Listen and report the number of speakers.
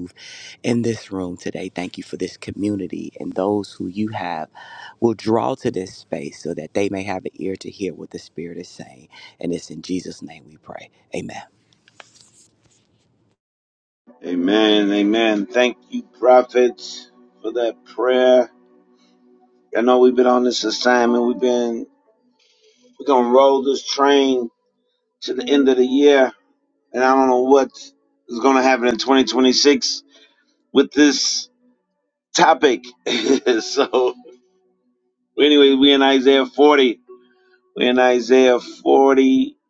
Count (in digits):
2